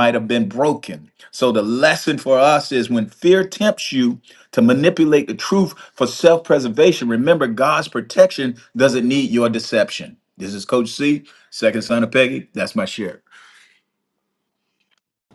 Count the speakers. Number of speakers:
one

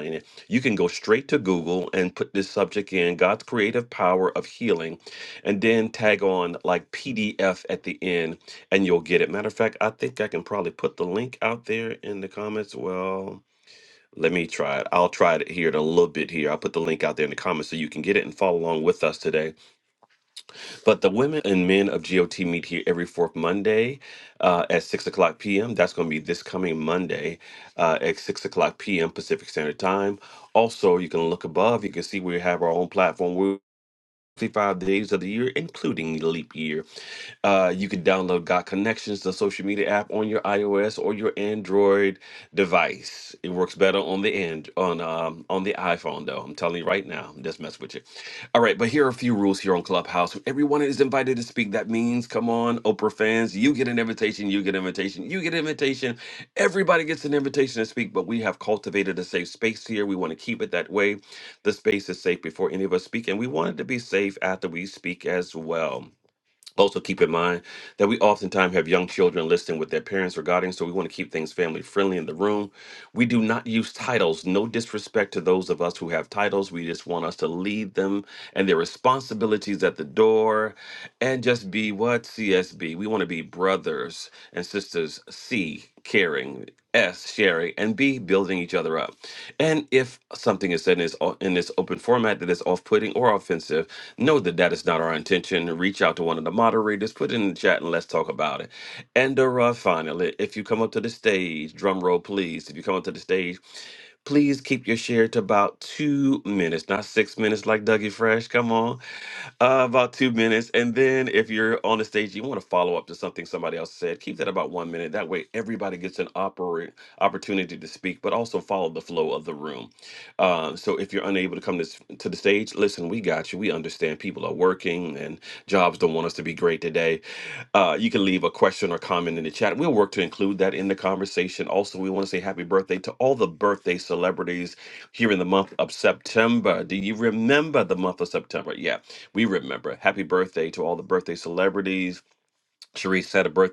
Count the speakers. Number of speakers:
one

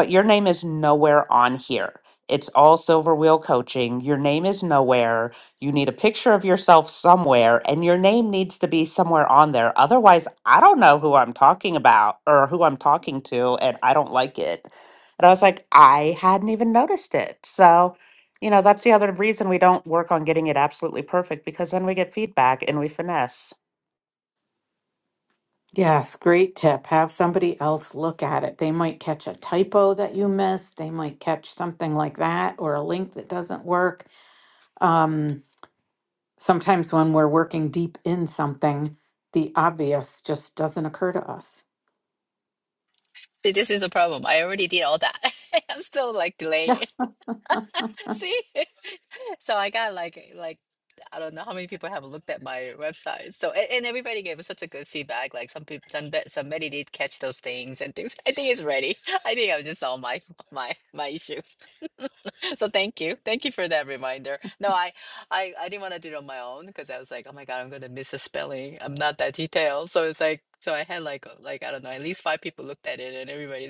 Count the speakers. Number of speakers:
three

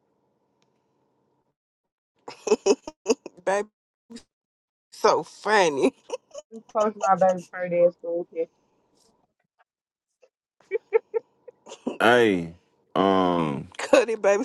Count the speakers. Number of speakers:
three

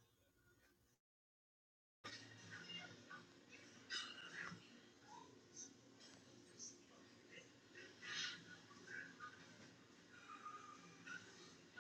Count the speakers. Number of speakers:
zero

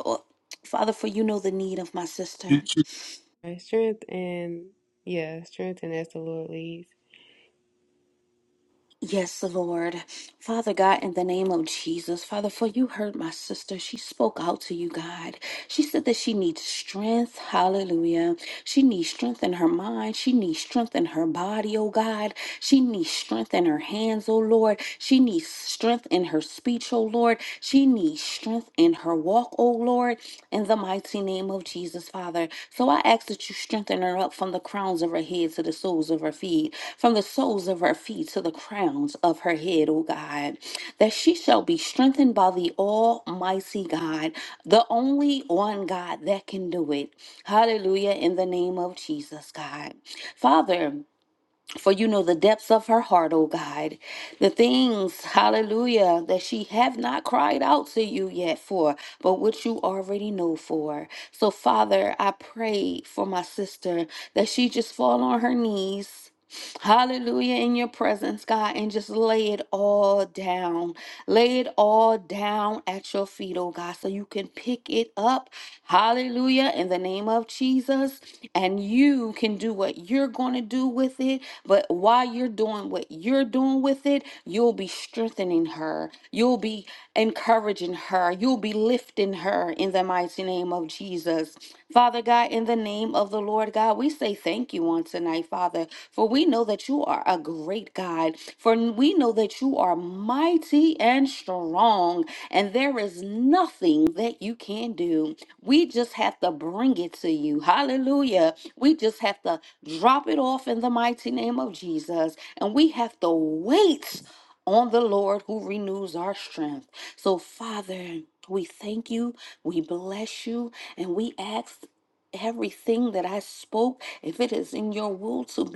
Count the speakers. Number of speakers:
two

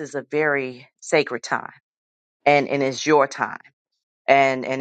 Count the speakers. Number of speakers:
one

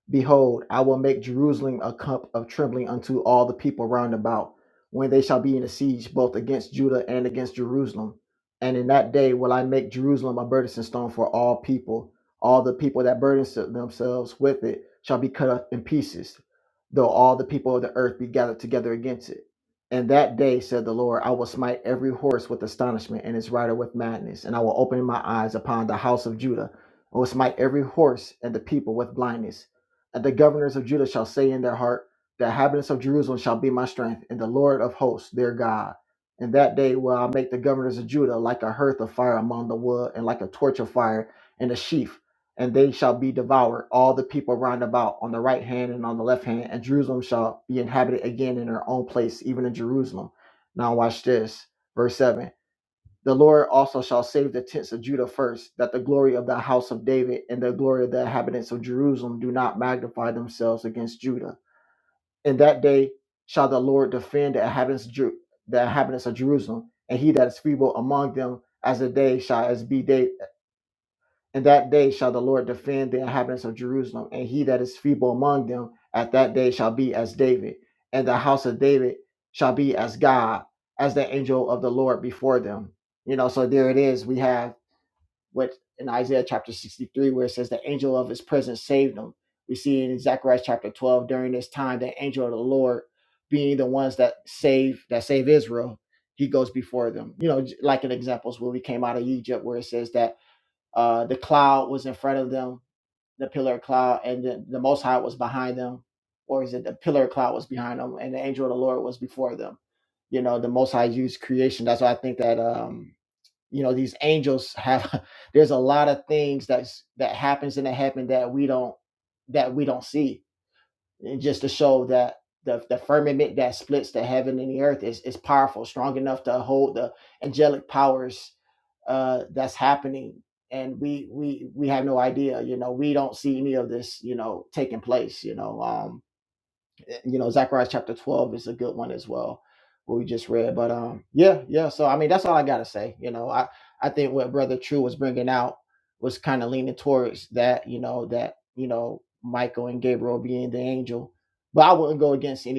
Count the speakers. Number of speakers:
one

